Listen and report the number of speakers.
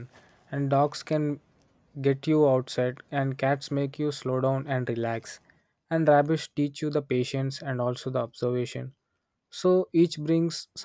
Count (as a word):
one